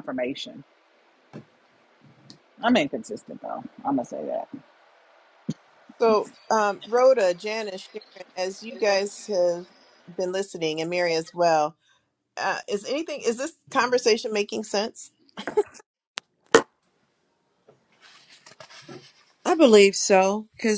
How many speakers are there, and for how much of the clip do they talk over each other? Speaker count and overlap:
three, no overlap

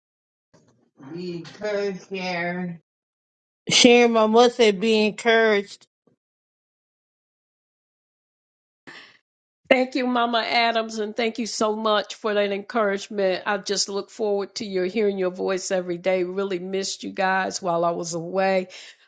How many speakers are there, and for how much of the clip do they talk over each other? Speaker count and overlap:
two, no overlap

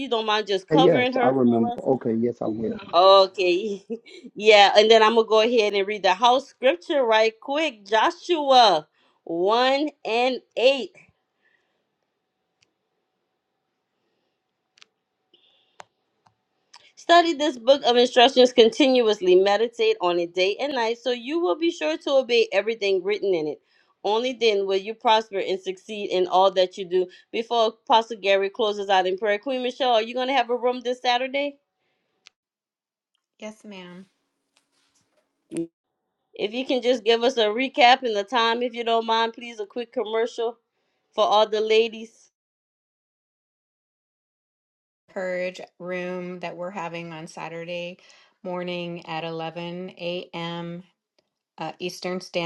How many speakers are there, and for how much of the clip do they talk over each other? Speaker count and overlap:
three, about 2%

